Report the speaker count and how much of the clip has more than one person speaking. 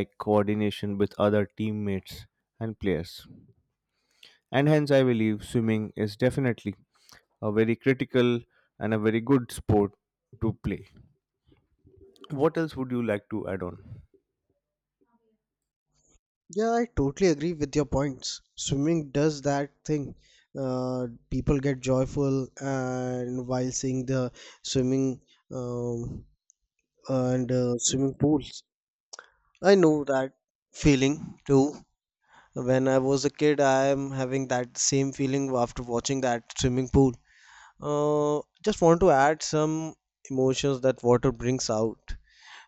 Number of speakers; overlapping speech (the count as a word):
two, no overlap